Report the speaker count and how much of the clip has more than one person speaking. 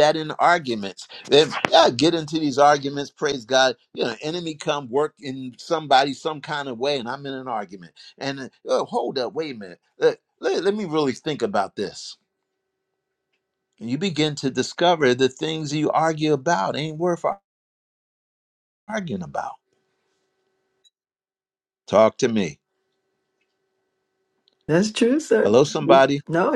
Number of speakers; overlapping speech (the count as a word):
two, under 1%